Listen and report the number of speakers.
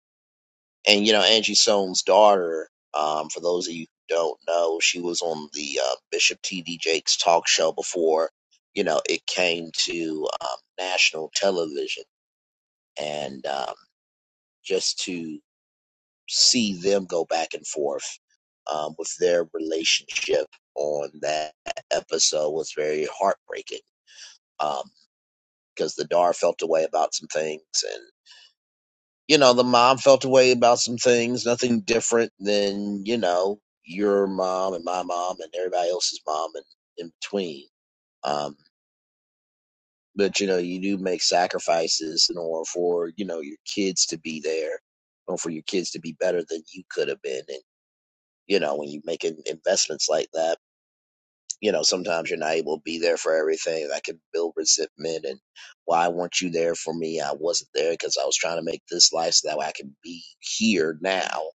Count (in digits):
1